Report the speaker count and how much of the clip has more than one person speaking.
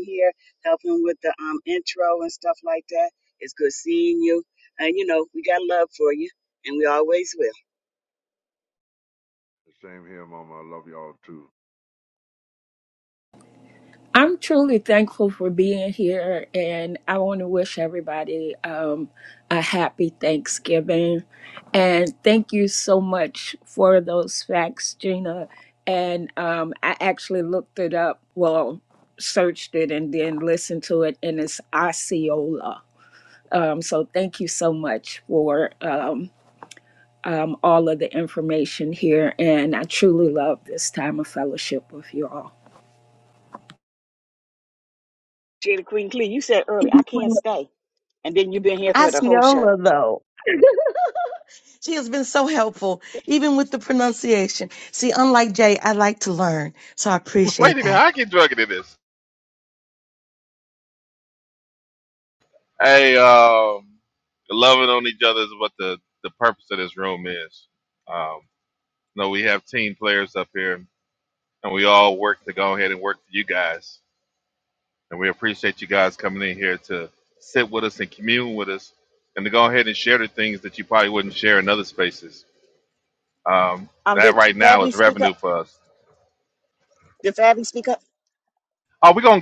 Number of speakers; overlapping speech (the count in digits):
5, about 3%